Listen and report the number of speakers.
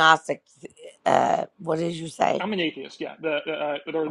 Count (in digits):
2